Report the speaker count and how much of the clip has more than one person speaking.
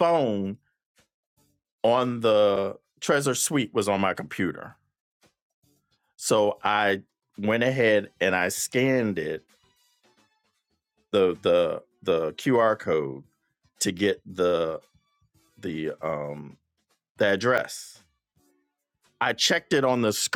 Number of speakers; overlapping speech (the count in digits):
1, no overlap